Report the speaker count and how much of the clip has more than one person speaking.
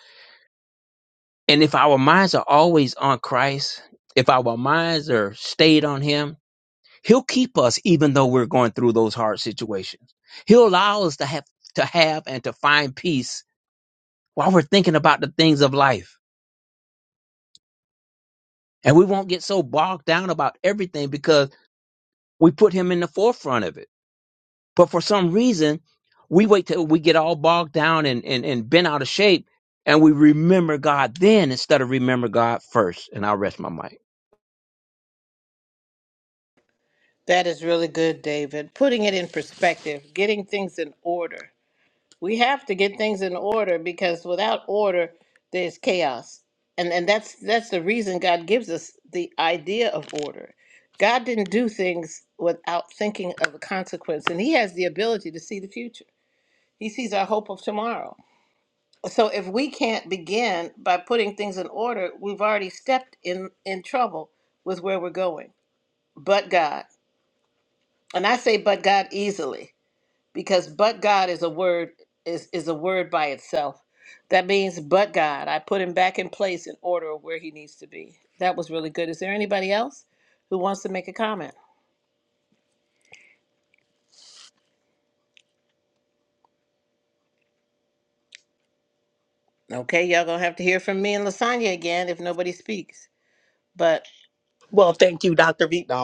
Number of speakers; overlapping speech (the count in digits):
3, no overlap